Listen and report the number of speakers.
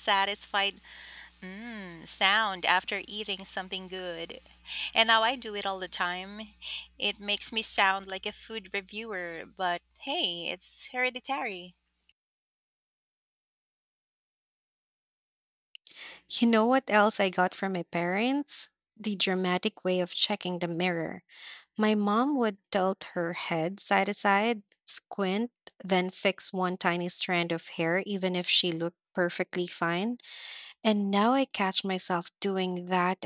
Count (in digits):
2